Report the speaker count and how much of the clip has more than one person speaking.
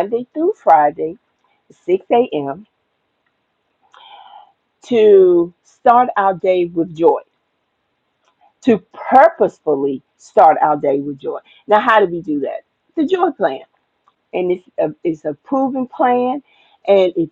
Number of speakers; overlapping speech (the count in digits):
1, no overlap